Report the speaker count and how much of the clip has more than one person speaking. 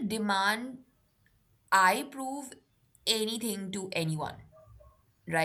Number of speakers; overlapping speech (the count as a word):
one, no overlap